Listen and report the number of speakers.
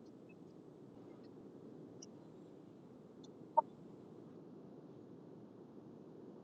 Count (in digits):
0